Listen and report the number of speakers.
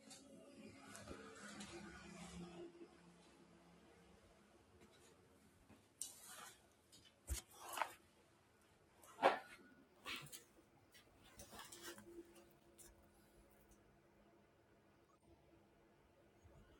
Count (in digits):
0